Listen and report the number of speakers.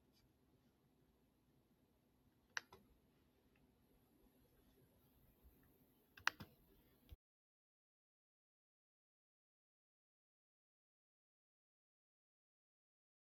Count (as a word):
zero